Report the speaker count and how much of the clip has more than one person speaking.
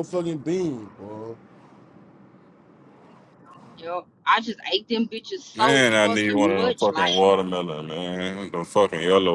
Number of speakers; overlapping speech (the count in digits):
3, about 17%